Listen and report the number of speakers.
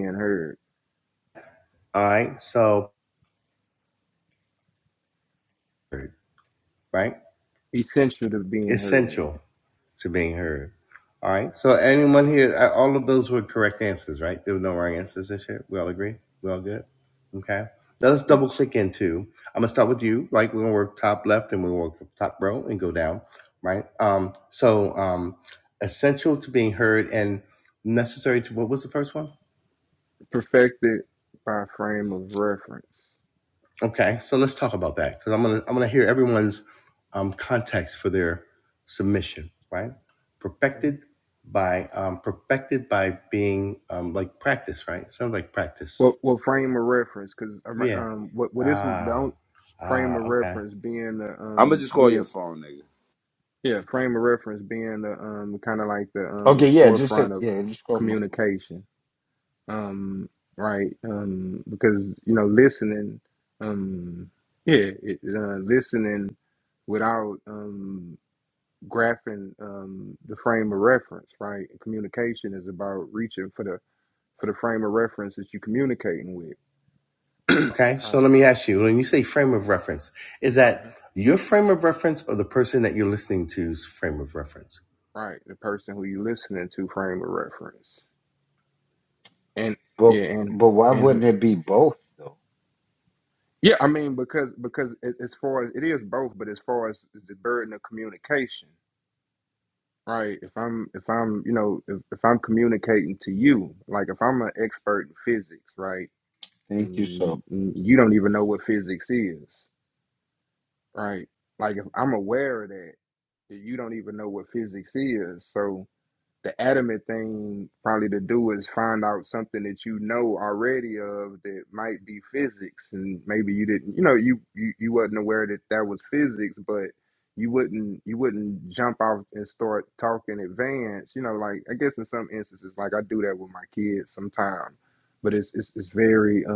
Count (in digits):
4